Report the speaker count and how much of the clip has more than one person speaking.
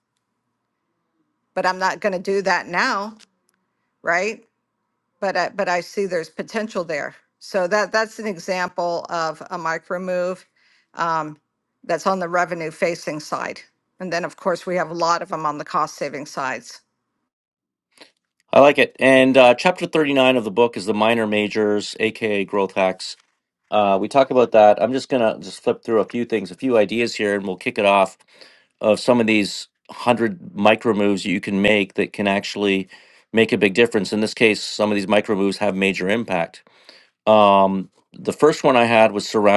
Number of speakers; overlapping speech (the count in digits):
2, no overlap